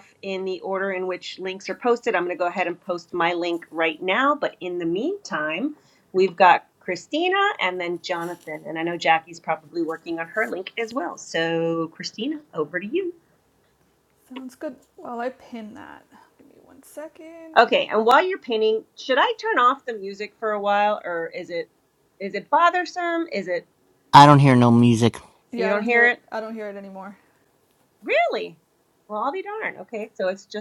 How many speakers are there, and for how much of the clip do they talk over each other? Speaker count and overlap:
three, about 2%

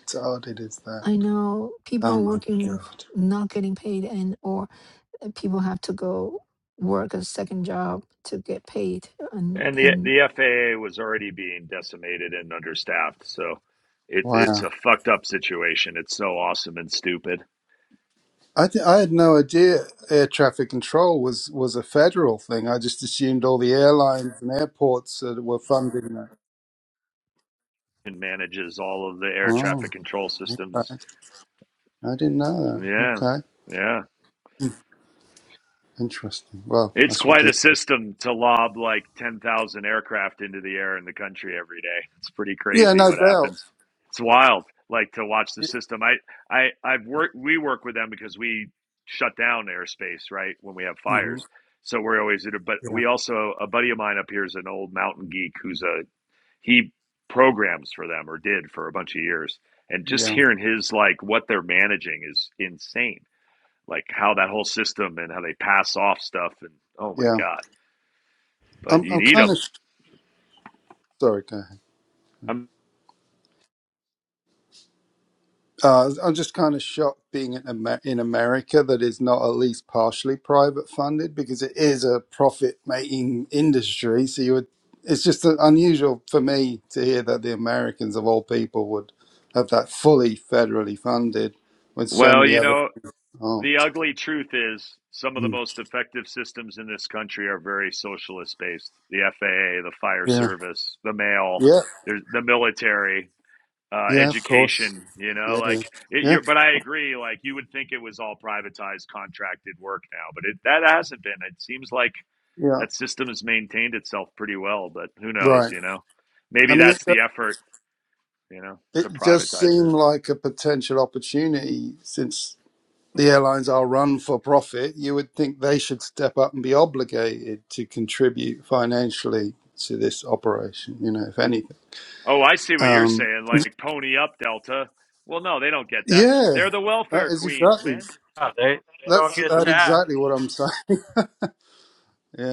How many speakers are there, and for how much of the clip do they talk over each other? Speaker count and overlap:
four, about 9%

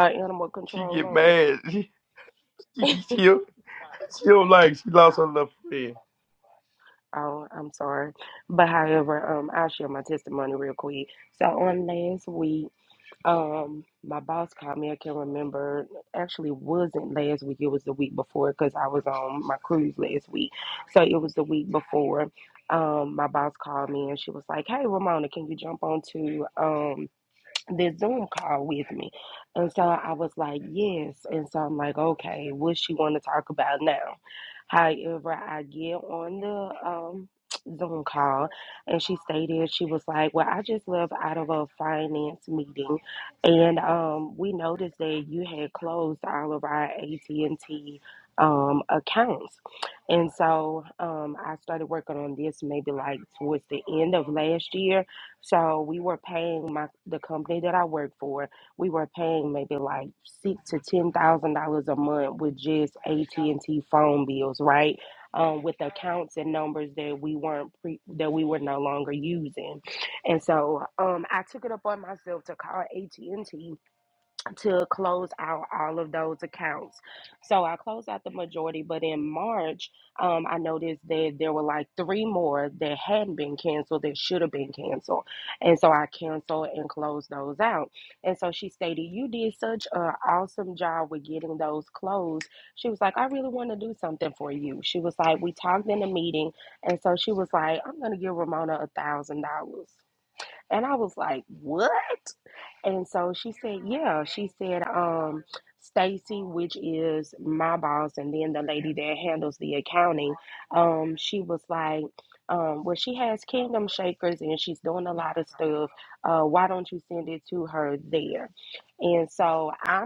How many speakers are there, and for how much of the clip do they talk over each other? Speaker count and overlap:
two, under 1%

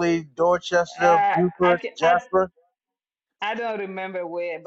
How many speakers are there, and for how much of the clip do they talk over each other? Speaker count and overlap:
two, about 28%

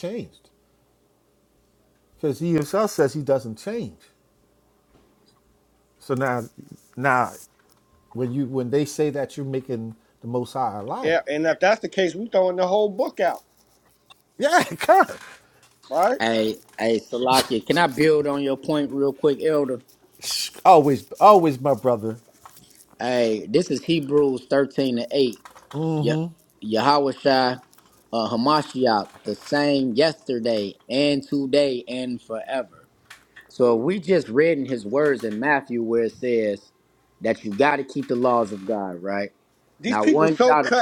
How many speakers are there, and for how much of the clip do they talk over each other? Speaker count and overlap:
three, about 3%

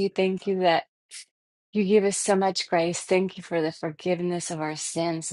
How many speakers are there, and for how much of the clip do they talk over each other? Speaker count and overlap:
one, no overlap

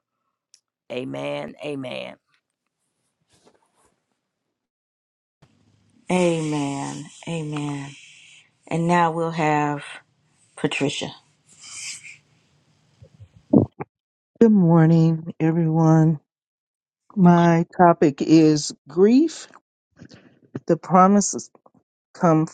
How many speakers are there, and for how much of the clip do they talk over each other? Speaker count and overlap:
three, no overlap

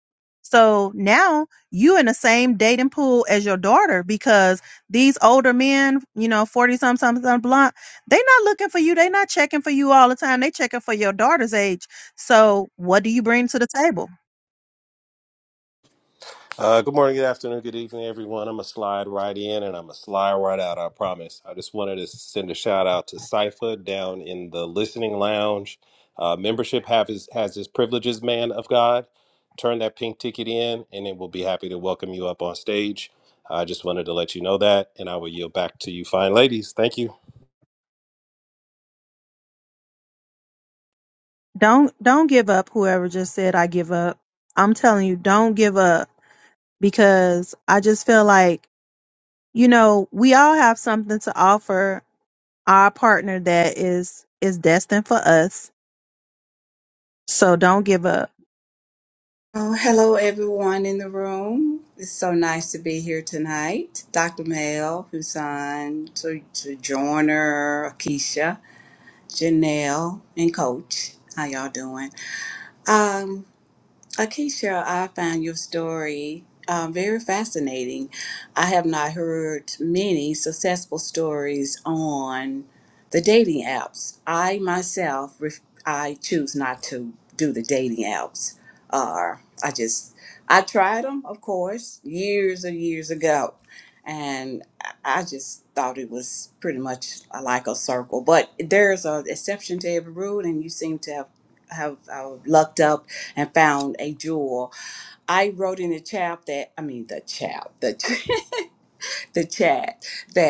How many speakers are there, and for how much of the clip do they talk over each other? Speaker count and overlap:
three, no overlap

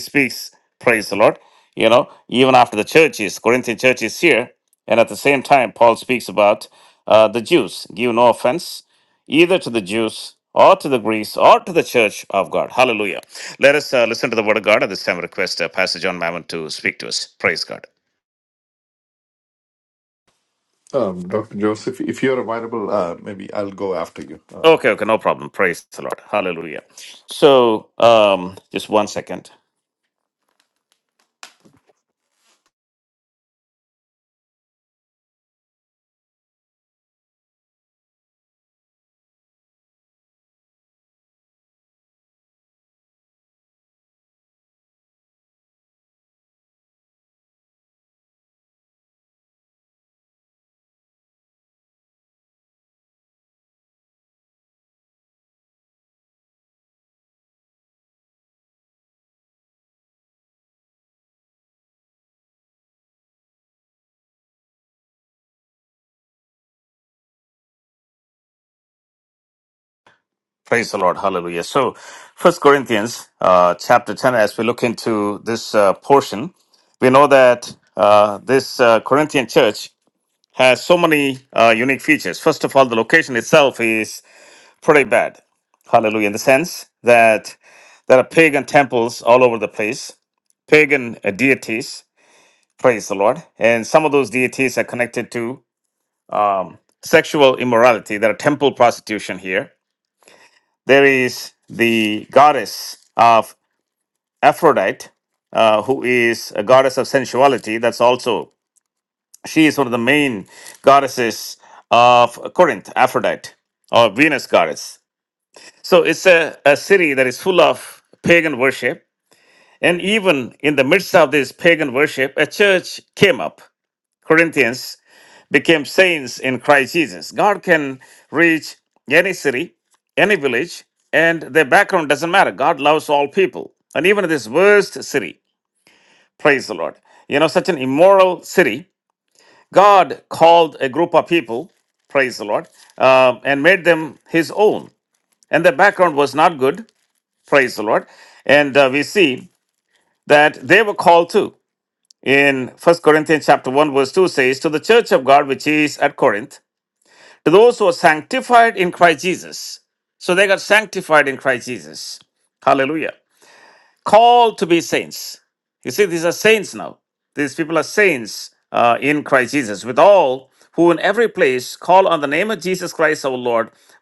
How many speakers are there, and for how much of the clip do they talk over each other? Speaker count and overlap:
two, under 1%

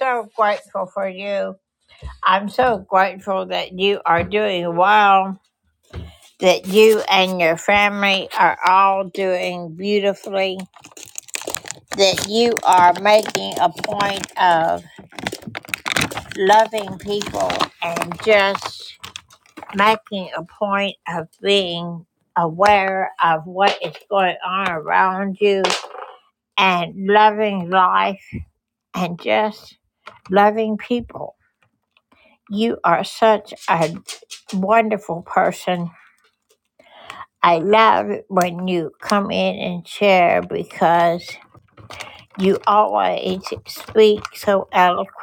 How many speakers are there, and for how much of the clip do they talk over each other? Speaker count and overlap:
one, no overlap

